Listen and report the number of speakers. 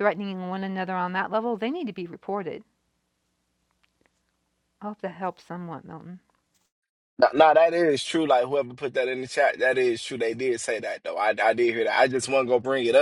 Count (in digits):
2